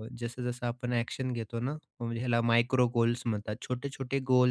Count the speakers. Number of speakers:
1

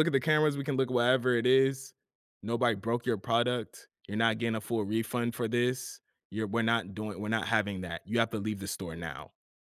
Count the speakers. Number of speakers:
1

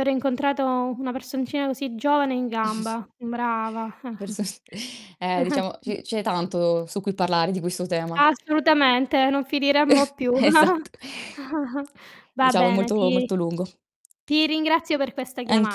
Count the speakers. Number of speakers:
2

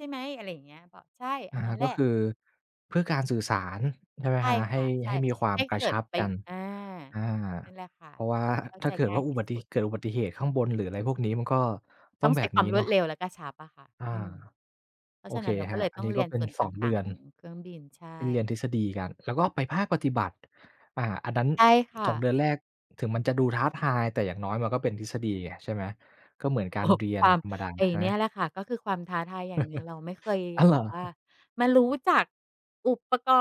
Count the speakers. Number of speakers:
2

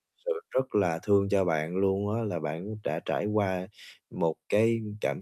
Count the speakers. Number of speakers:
1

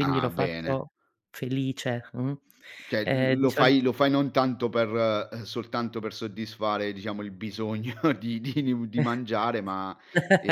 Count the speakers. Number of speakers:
2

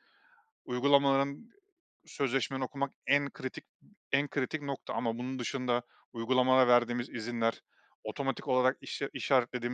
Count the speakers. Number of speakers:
1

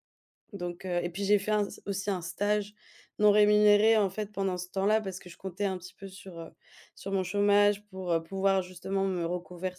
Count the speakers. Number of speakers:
1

